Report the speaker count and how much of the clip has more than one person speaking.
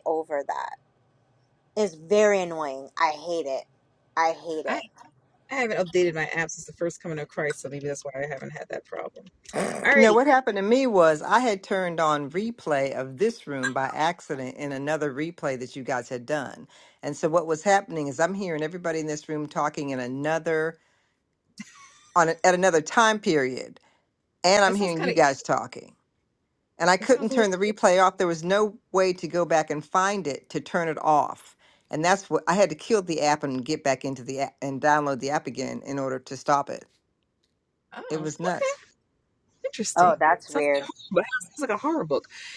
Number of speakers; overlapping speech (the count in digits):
3, about 5%